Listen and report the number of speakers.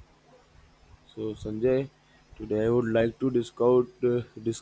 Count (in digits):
1